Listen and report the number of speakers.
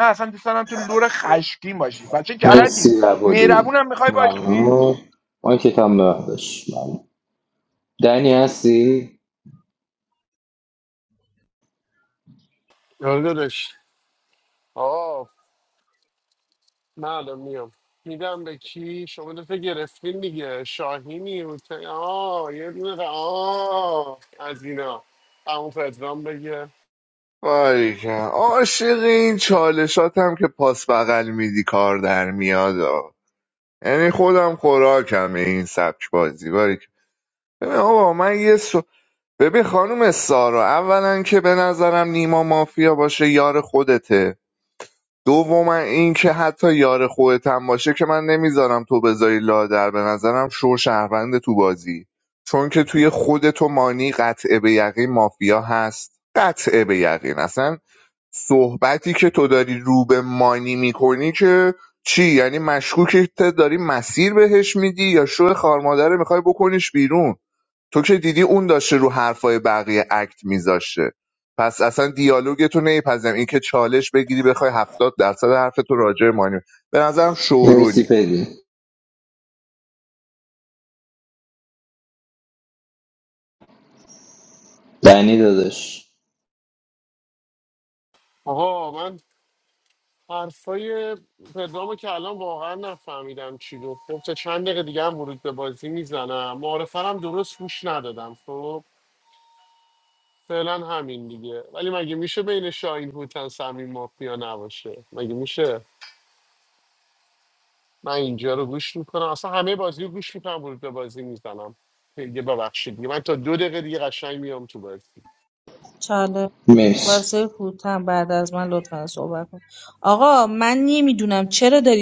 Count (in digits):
5